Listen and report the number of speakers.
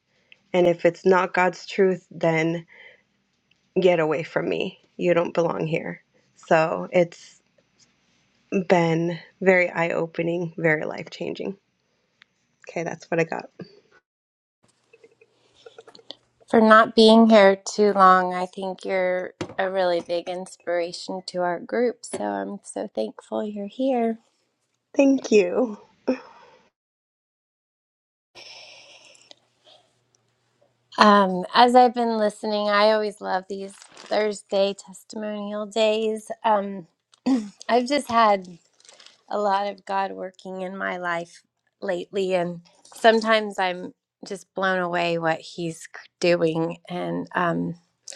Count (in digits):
2